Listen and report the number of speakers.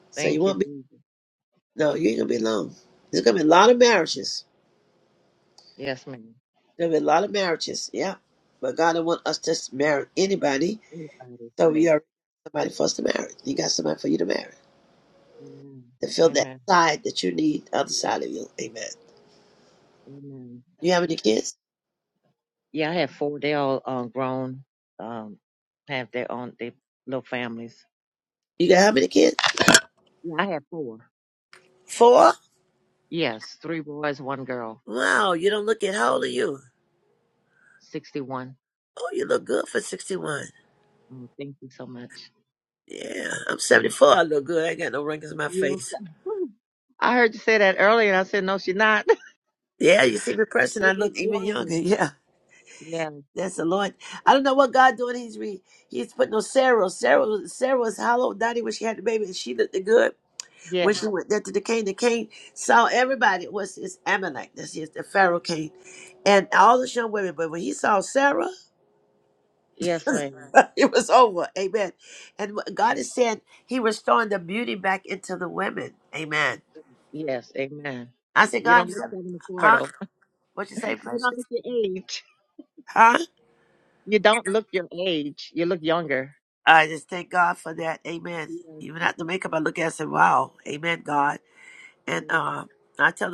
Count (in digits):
2